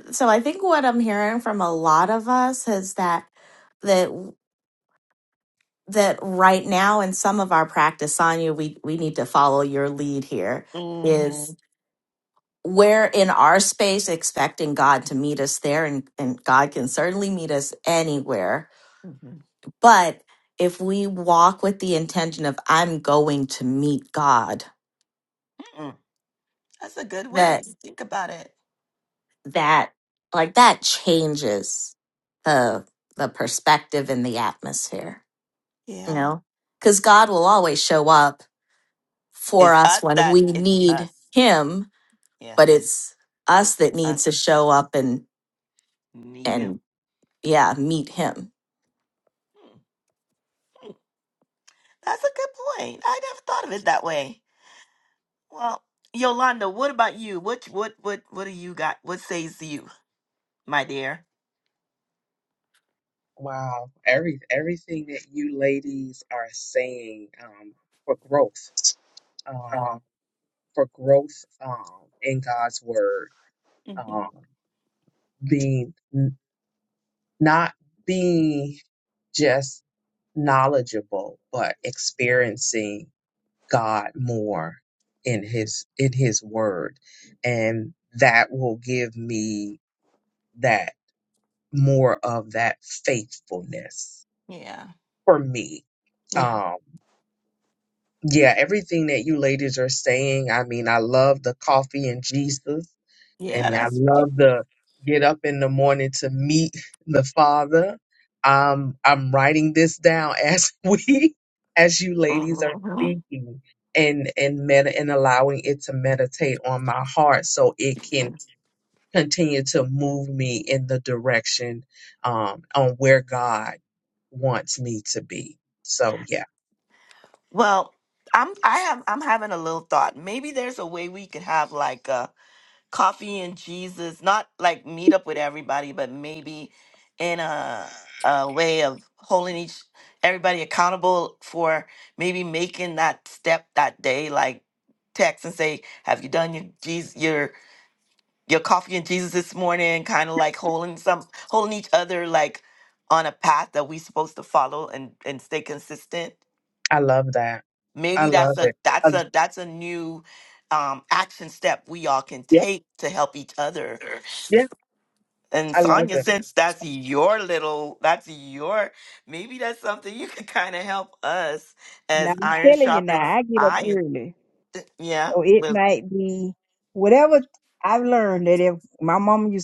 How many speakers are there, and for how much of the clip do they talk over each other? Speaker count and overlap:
4, about 5%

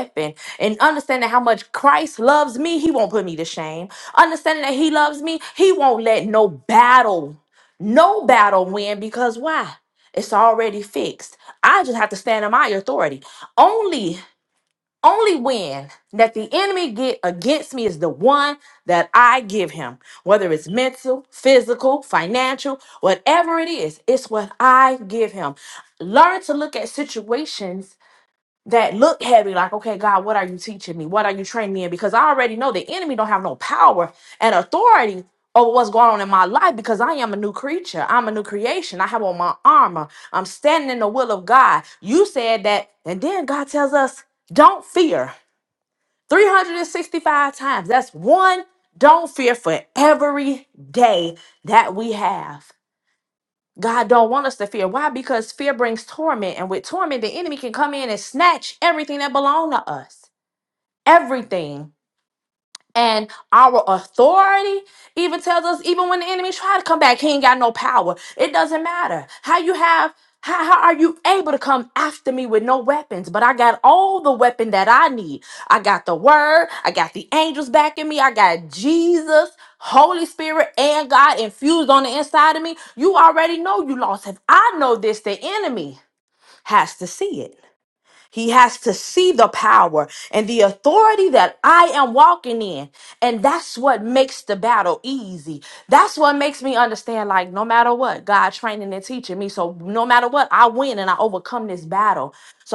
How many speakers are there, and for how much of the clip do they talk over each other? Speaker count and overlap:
1, no overlap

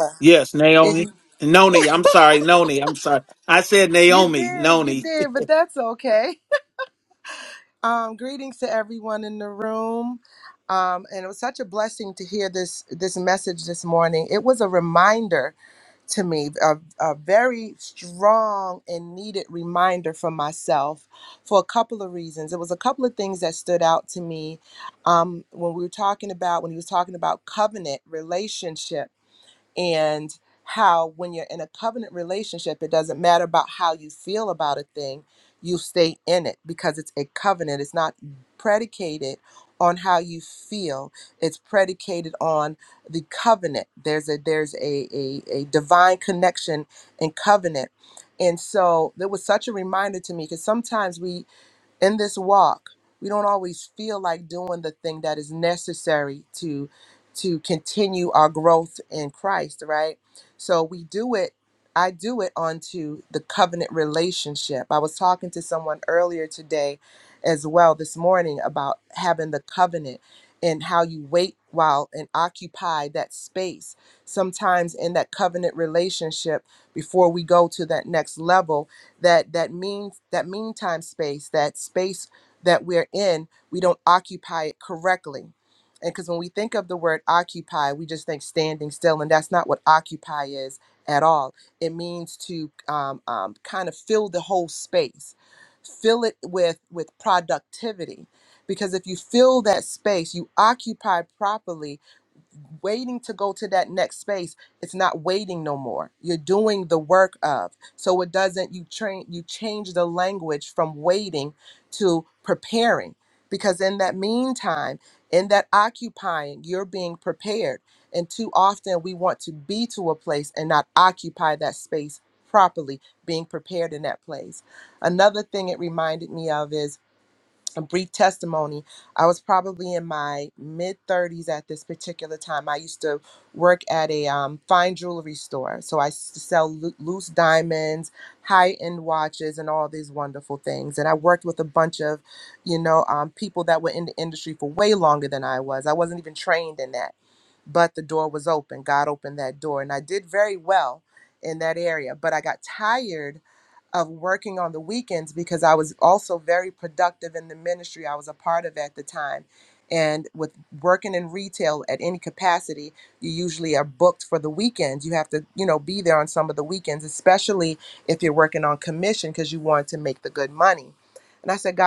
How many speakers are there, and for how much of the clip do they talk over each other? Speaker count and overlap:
2, about 1%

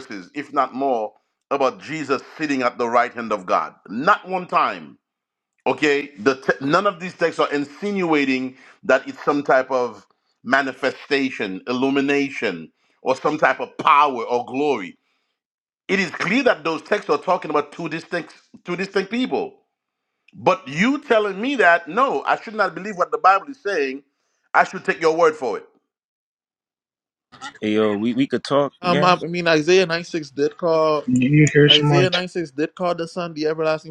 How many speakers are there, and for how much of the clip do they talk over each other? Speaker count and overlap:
4, about 3%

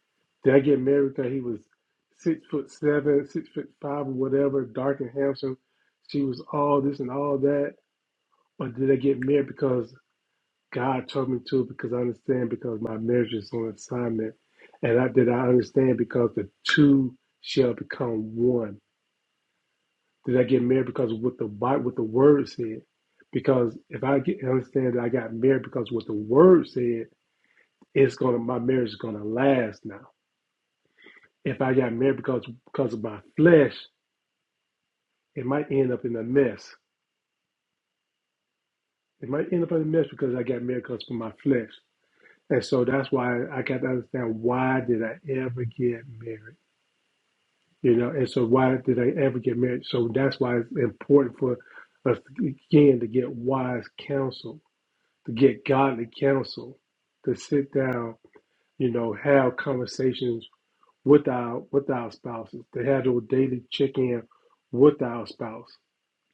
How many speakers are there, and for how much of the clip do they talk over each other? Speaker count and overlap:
1, no overlap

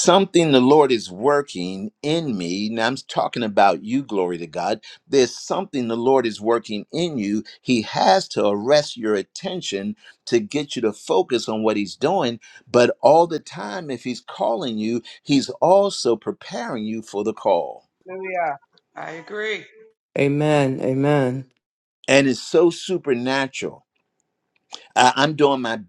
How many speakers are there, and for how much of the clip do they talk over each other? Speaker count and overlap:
3, no overlap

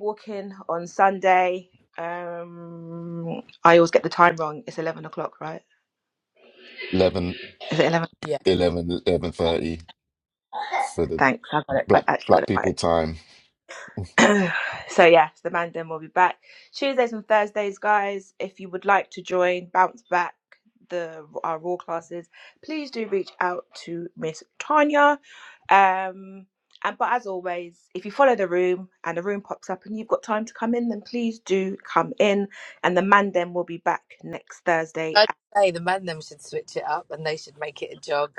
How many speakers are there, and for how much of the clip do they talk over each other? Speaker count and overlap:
3, about 3%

